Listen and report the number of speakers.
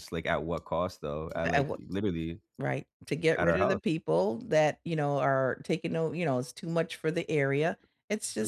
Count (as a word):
two